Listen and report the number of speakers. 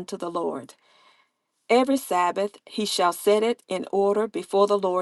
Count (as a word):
one